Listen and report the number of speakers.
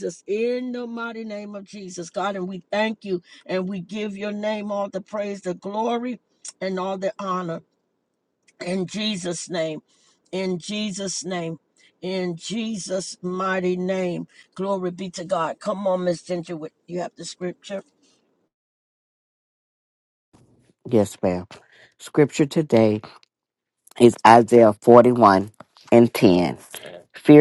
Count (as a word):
two